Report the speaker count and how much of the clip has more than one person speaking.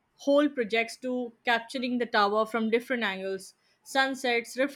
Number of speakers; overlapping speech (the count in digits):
1, no overlap